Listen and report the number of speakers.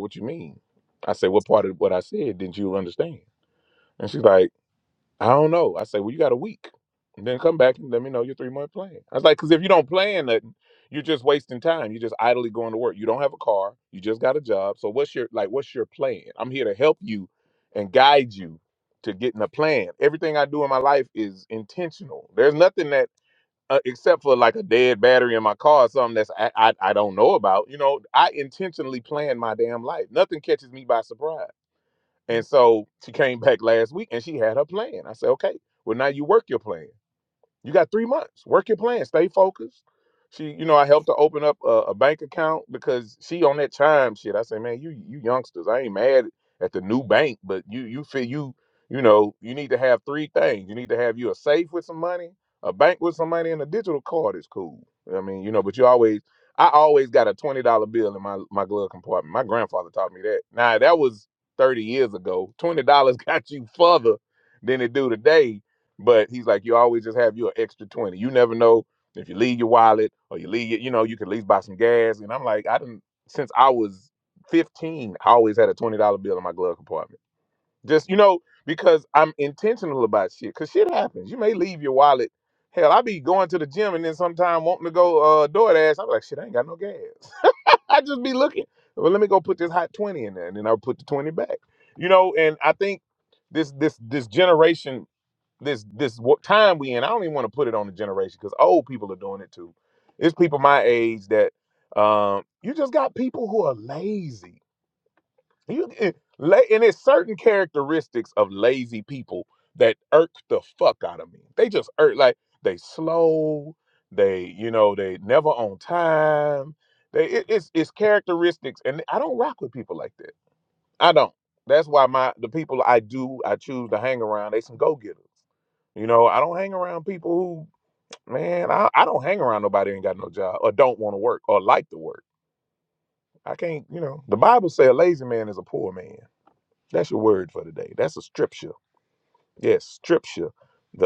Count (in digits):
1